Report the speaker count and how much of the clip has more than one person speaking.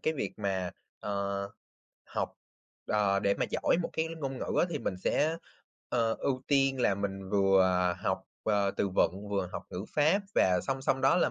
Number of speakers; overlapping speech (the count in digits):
1, no overlap